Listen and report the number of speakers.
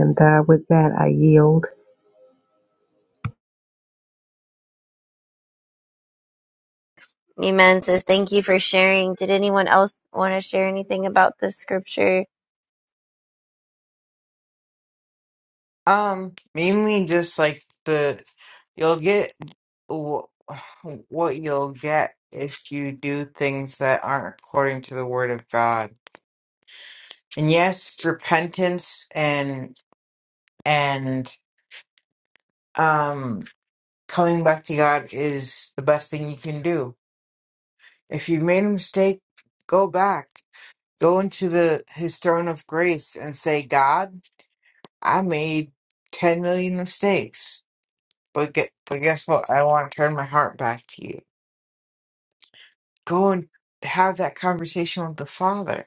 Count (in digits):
3